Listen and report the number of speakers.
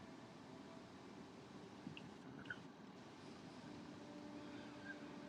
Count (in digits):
0